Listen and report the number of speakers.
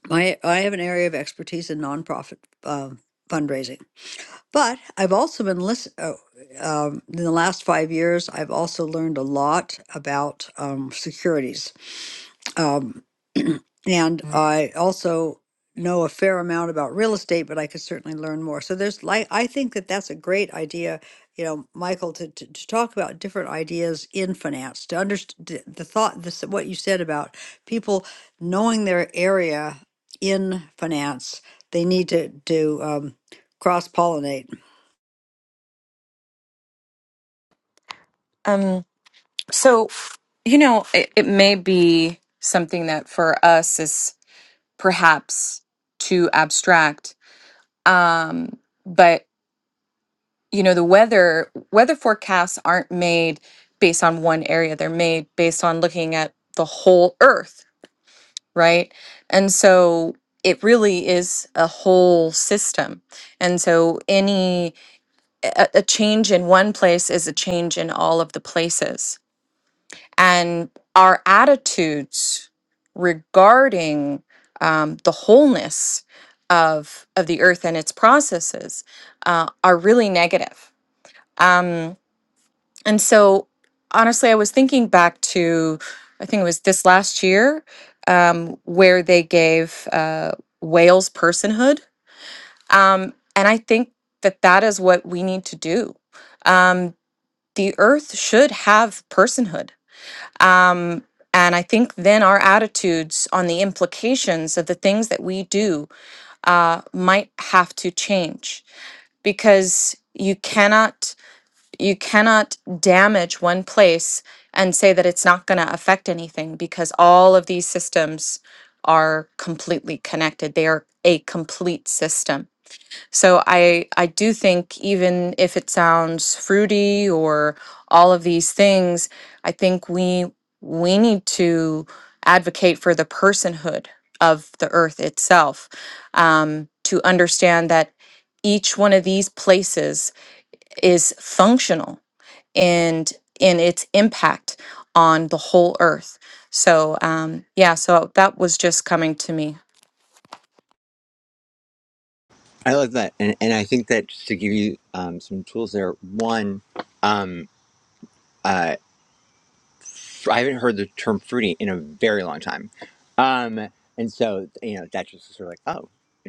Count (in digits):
3